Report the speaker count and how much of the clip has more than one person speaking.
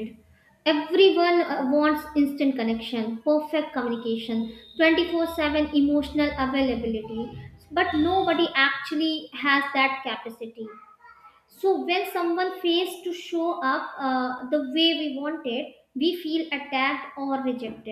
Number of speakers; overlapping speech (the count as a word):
one, no overlap